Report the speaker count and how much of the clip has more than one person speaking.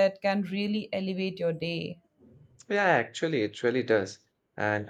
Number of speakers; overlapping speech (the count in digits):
2, no overlap